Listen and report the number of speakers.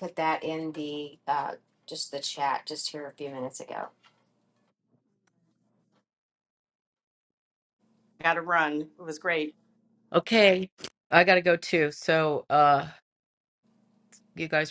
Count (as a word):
three